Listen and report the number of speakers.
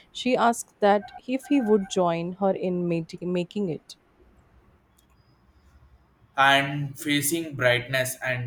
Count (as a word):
two